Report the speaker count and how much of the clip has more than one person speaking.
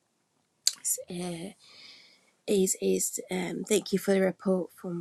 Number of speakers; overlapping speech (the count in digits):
1, no overlap